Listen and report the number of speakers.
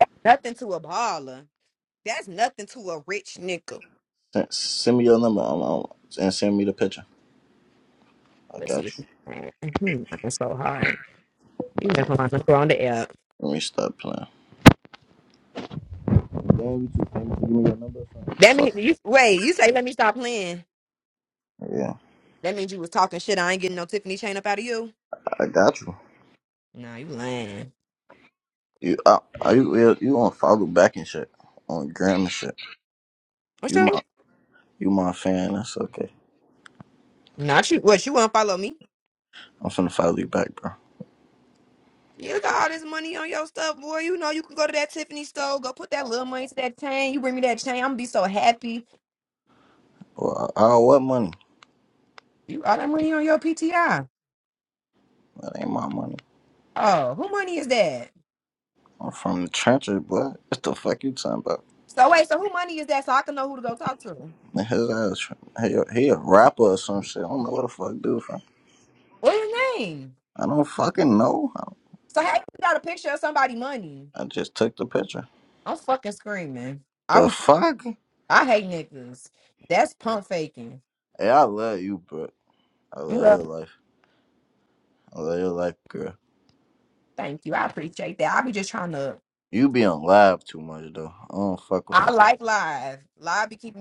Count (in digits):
2